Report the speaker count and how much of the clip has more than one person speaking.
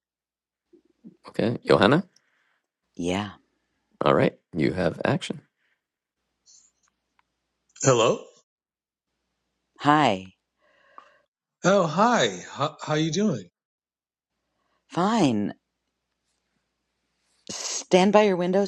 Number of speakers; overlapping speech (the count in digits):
3, no overlap